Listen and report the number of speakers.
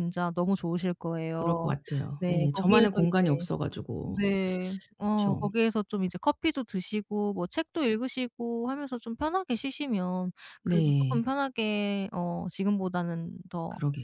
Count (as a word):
two